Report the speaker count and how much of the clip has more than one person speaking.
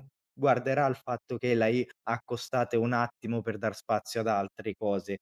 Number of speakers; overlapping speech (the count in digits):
1, no overlap